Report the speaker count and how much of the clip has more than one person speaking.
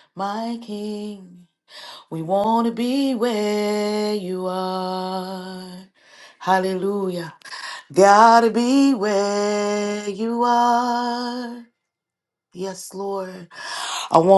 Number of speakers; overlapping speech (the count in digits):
1, no overlap